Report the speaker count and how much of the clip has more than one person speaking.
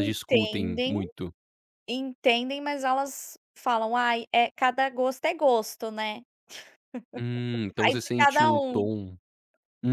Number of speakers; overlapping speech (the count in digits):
2, about 22%